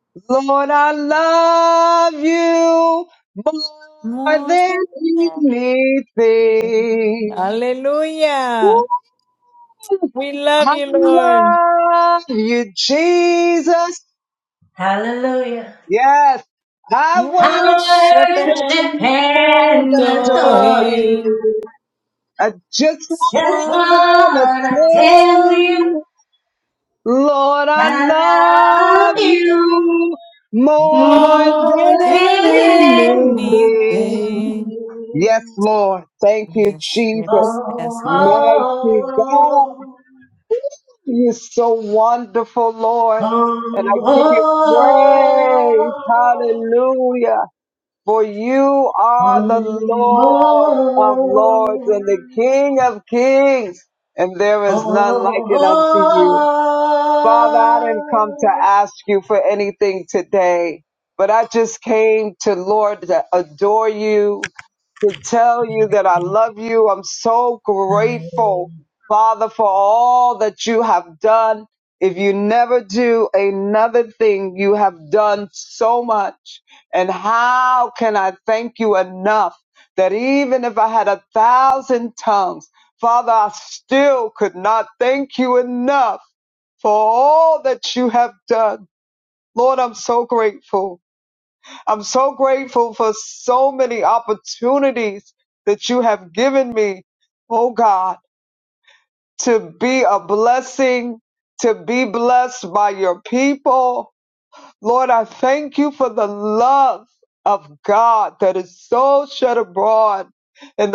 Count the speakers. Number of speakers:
three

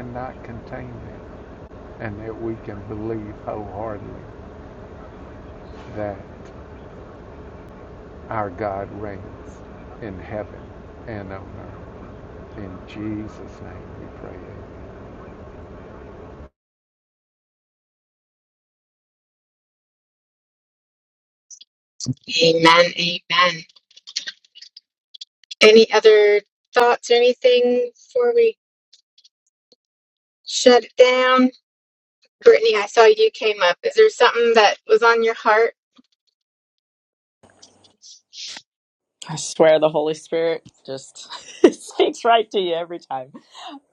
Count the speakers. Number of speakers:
three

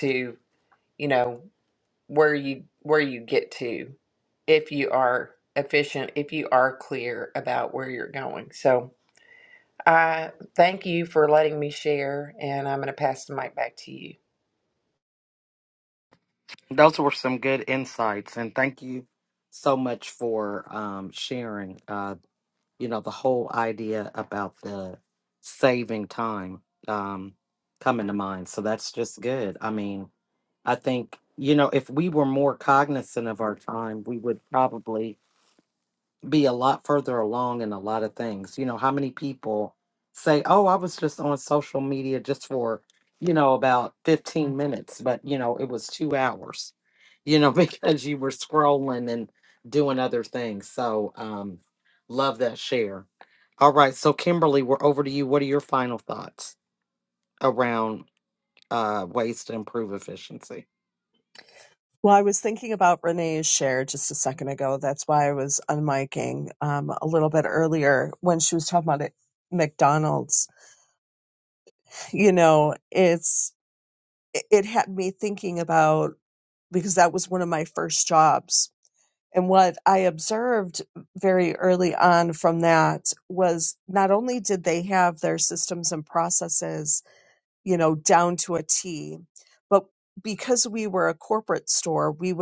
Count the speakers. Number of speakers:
three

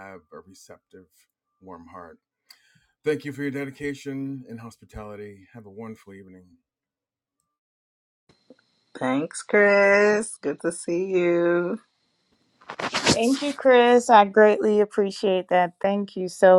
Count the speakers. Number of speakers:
three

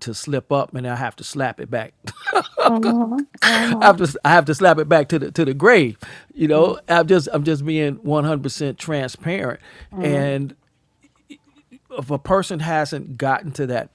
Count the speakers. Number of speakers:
two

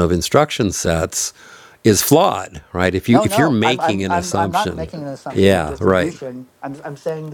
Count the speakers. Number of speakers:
two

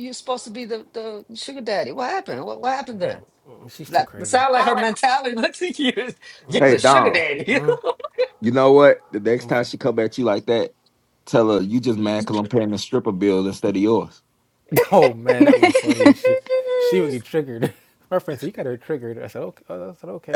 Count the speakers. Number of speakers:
three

